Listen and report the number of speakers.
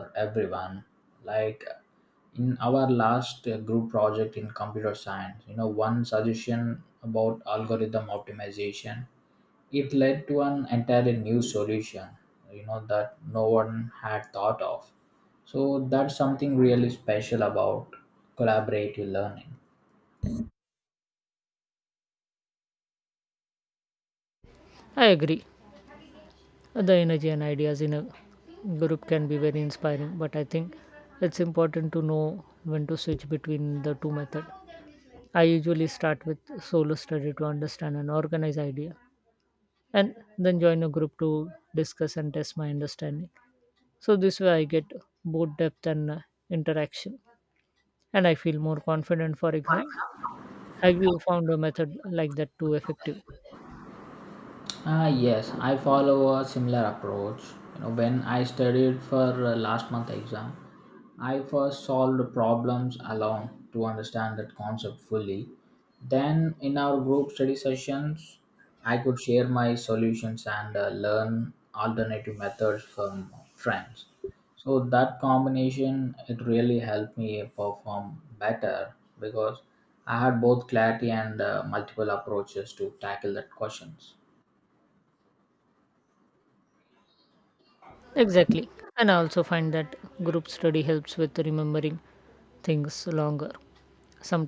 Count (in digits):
2